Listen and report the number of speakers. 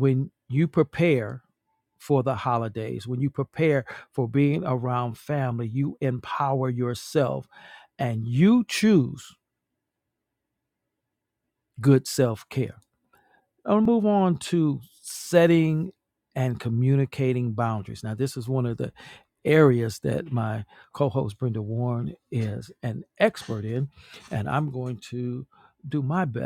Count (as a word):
one